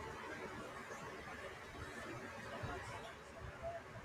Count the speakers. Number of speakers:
0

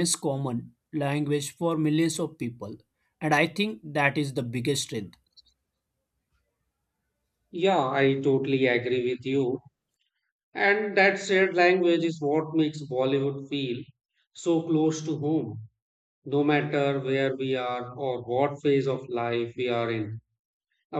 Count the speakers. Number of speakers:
2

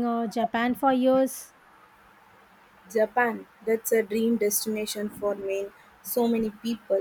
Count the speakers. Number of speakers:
2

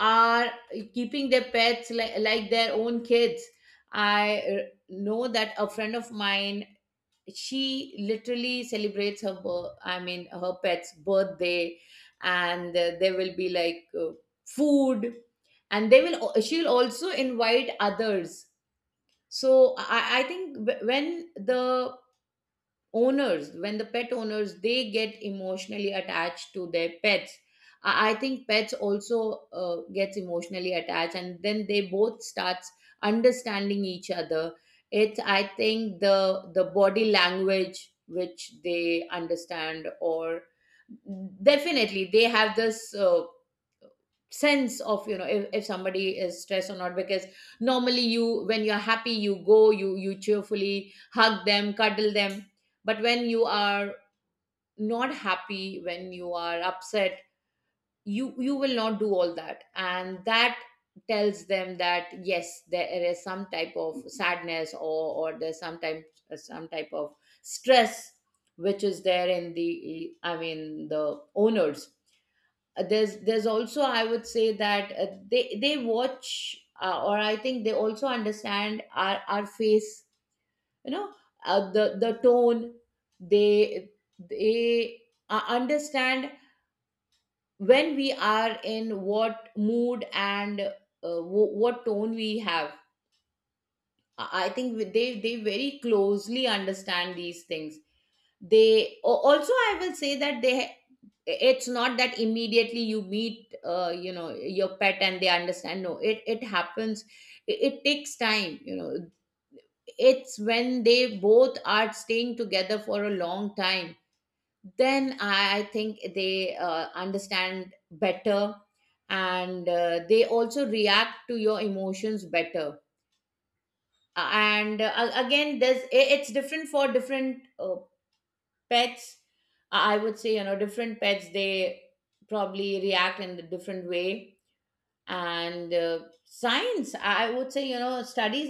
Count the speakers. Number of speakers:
1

